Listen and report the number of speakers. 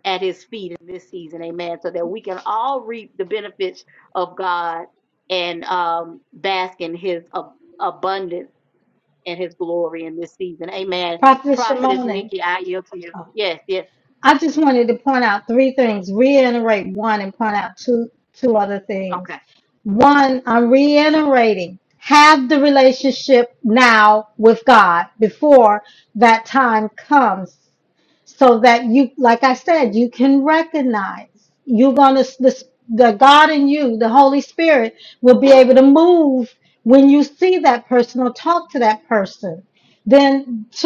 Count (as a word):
two